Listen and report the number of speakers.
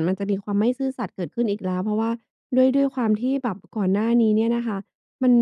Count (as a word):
one